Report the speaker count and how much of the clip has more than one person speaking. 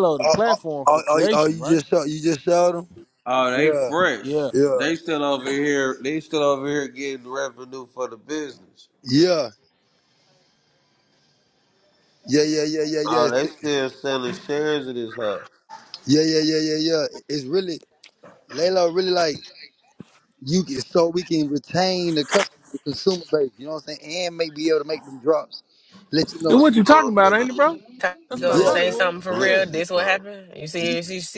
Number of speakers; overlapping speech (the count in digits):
4, about 17%